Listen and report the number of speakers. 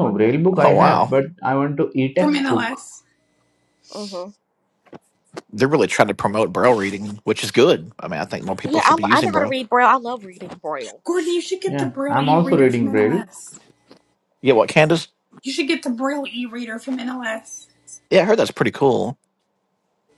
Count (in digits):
4